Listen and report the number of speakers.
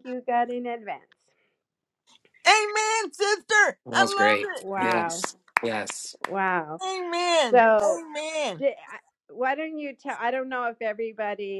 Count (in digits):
3